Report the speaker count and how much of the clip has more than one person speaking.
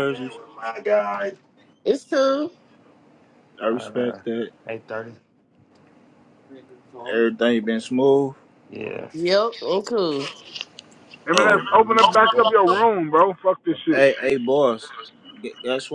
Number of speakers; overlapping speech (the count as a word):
four, about 8%